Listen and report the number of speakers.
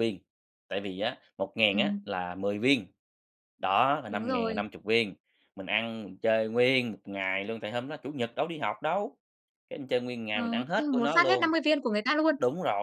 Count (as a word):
two